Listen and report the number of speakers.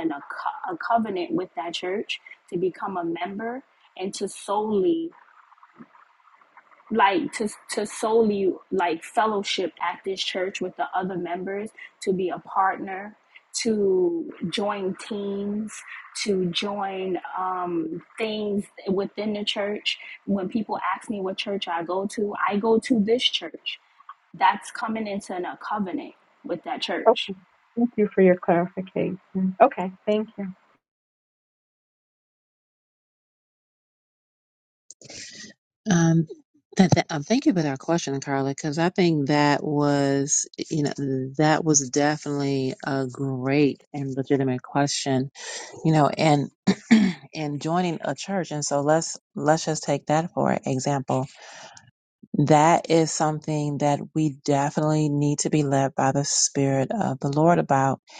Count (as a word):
three